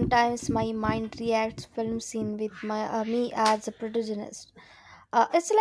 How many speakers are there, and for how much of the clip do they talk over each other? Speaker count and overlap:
1, no overlap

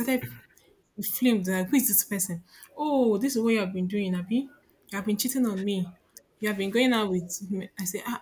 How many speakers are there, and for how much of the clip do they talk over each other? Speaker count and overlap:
1, no overlap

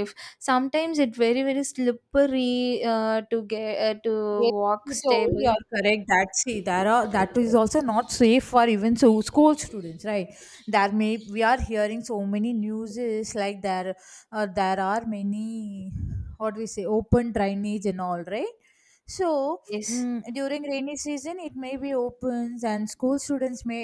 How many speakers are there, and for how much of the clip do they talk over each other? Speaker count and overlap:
2, about 3%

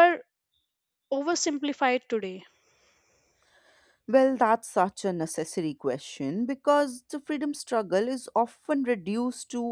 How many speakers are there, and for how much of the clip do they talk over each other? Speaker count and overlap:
2, no overlap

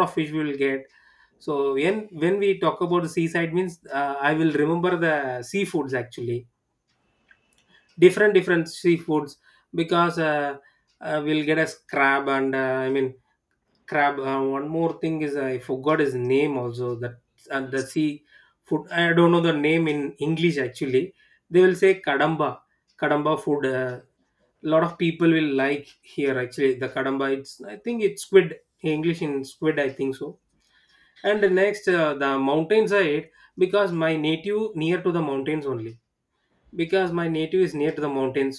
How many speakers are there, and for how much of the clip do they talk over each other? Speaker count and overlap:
1, no overlap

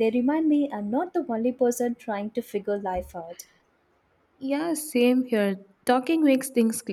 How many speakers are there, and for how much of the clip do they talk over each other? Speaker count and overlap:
2, no overlap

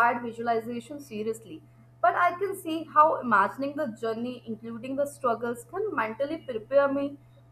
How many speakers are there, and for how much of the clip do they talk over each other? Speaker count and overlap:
1, no overlap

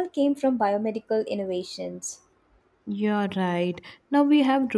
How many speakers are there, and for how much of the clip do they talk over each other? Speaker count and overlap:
2, no overlap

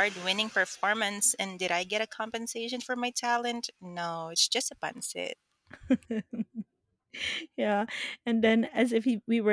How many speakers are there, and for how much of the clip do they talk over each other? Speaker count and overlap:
2, no overlap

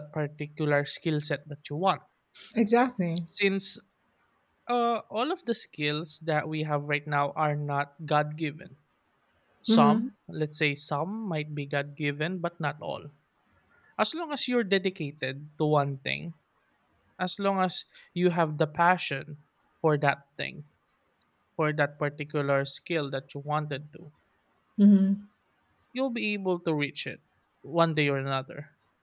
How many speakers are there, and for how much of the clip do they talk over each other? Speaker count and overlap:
2, about 1%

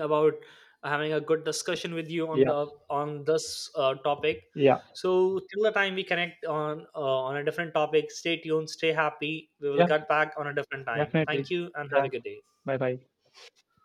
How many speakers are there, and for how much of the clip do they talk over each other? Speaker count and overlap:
2, about 8%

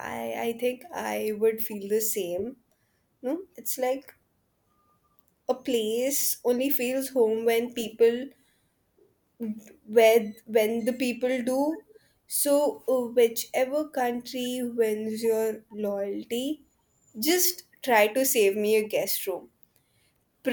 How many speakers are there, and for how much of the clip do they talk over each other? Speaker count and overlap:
1, no overlap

